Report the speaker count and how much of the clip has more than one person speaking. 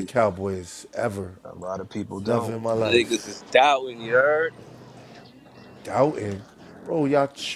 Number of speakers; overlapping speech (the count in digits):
3, about 13%